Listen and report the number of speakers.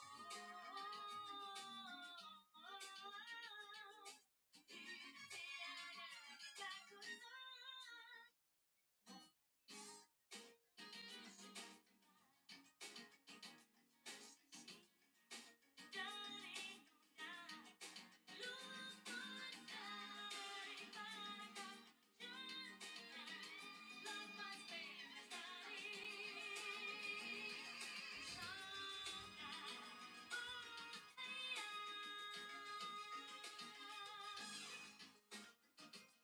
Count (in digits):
0